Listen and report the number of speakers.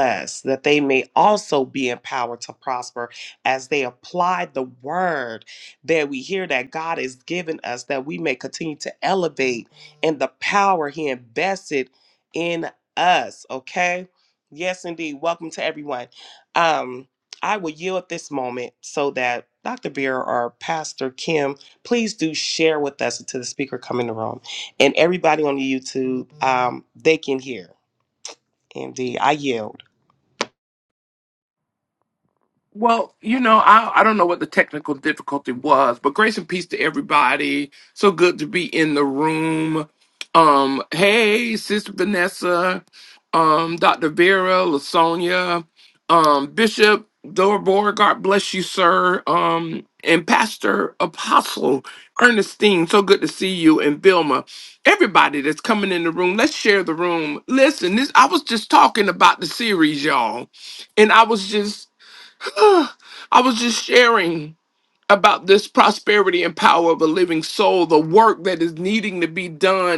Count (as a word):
two